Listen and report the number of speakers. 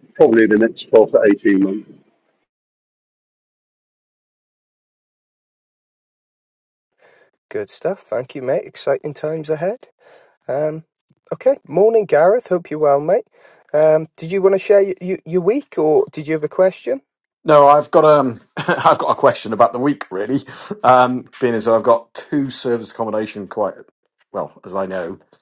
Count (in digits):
3